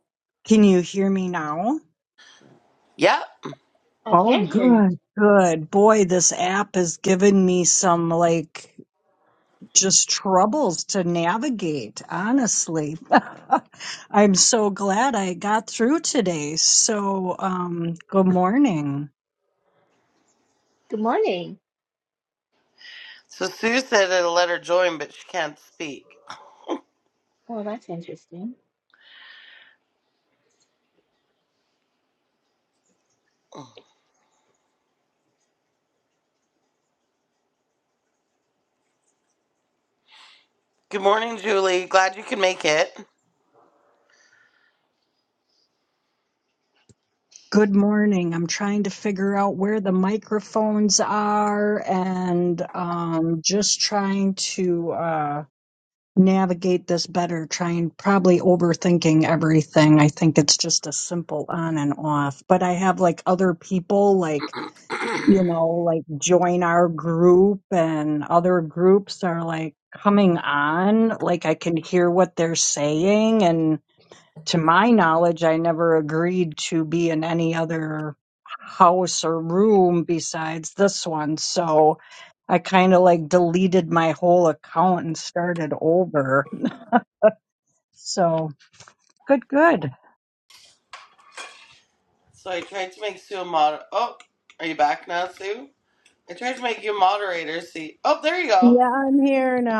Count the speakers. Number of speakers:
4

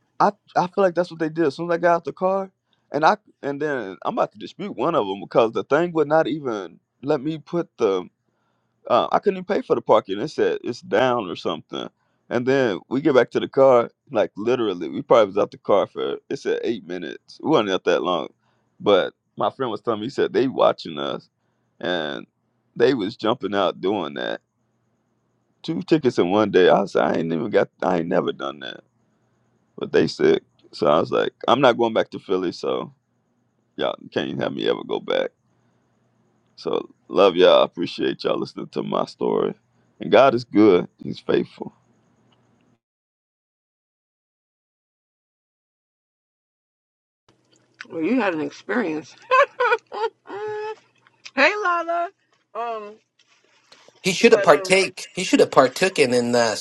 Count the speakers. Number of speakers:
3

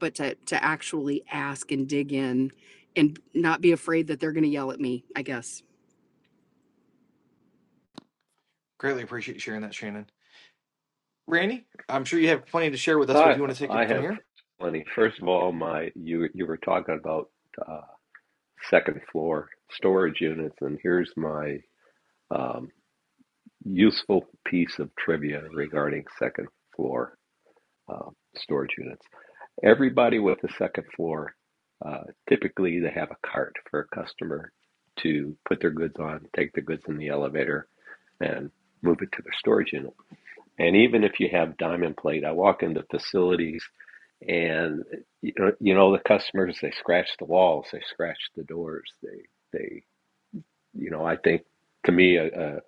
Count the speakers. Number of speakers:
3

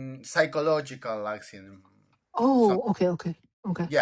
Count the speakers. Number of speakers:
2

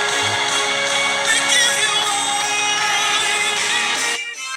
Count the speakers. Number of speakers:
0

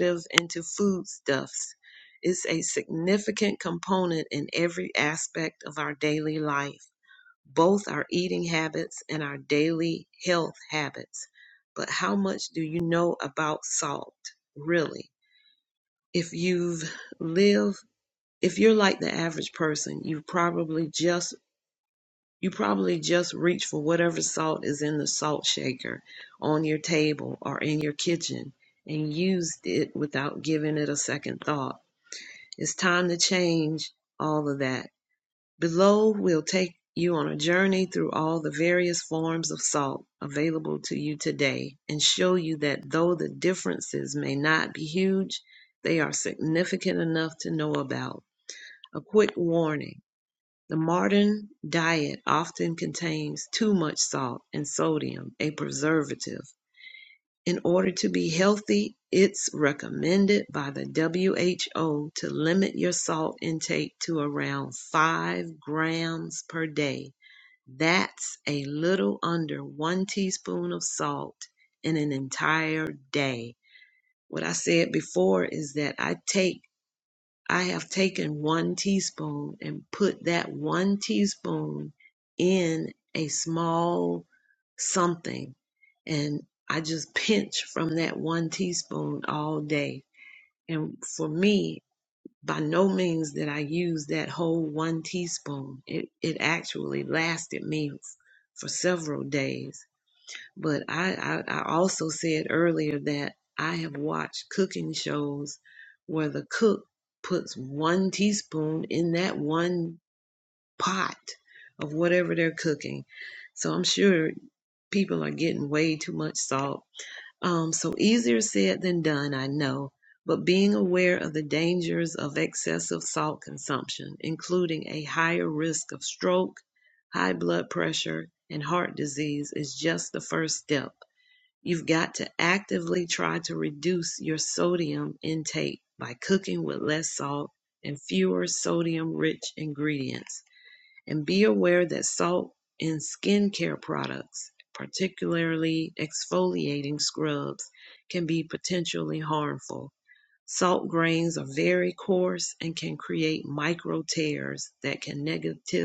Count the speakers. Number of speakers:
1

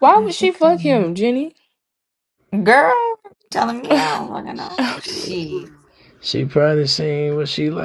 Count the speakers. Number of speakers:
3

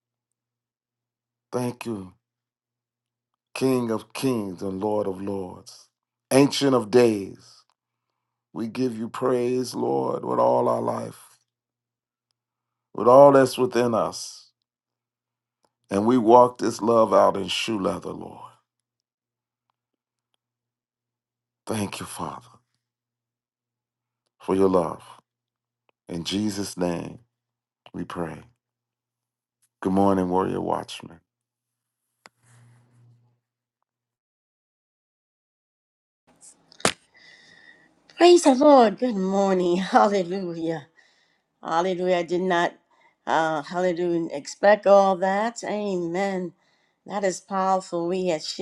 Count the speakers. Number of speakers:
2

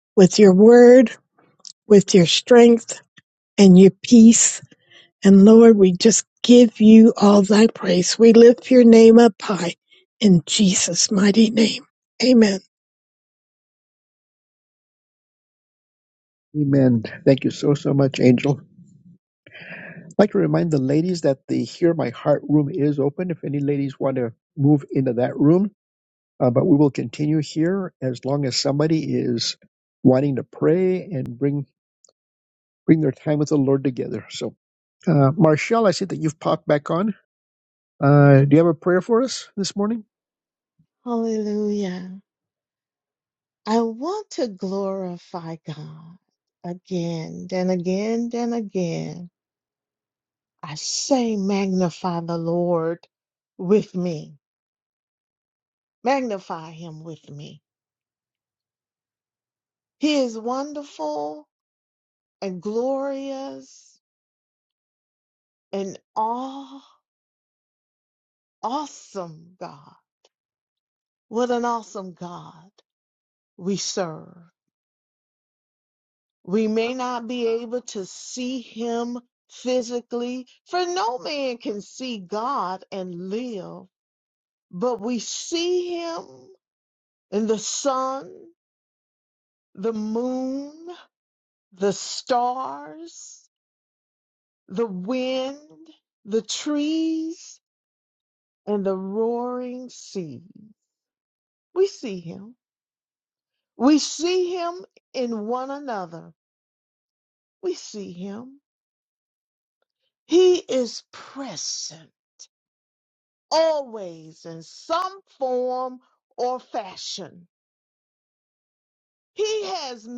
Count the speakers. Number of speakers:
3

